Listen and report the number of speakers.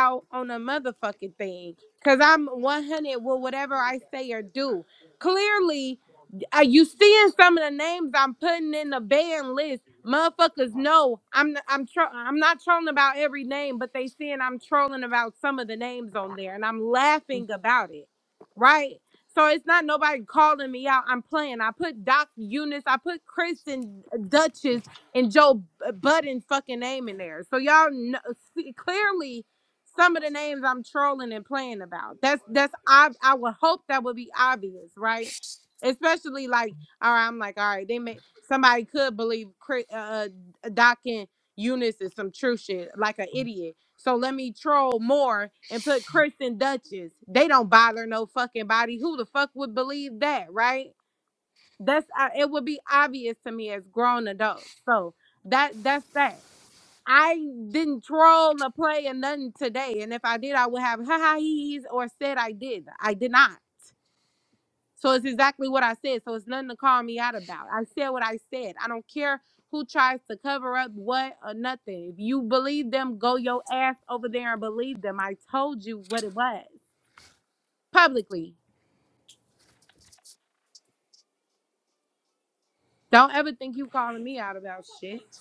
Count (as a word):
one